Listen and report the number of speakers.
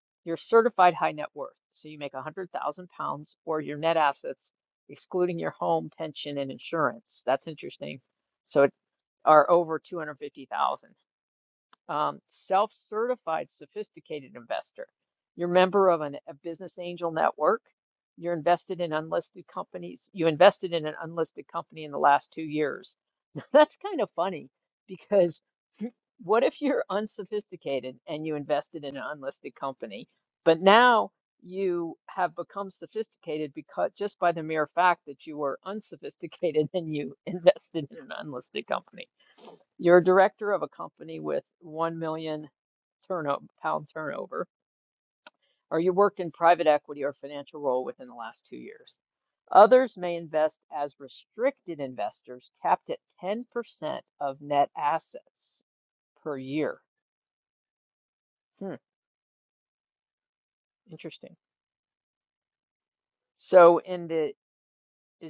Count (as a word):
one